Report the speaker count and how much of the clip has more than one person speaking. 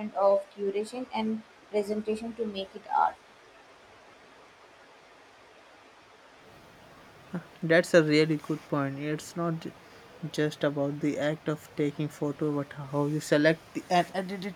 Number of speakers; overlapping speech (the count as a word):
two, no overlap